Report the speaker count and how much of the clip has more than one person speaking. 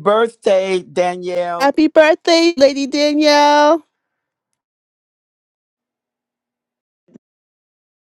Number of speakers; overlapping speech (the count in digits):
2, about 1%